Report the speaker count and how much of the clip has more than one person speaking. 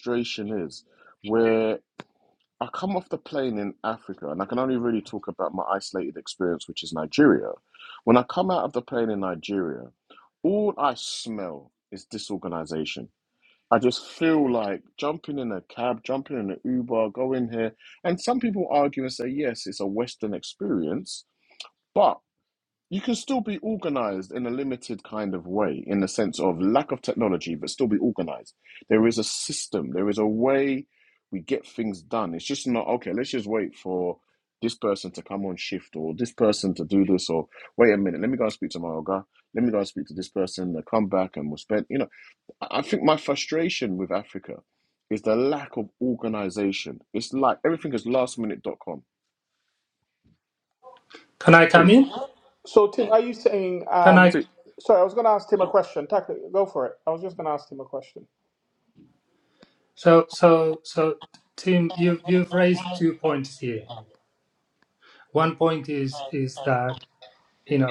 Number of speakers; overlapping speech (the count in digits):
3, about 1%